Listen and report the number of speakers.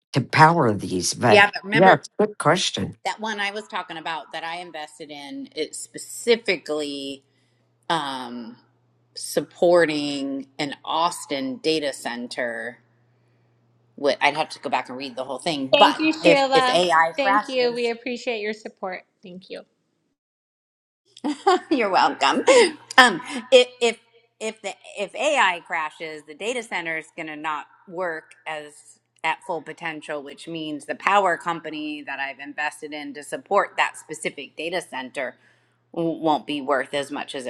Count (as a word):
three